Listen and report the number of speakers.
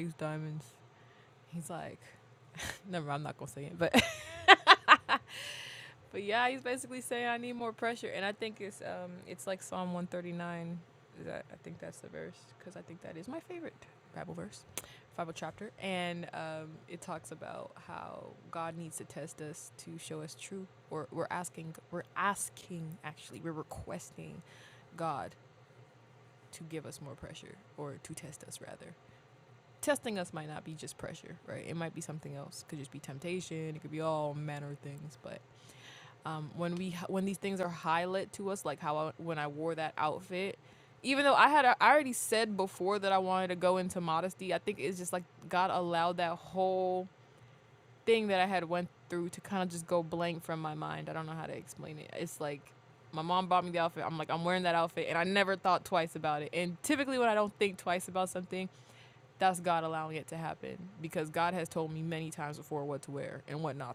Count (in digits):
1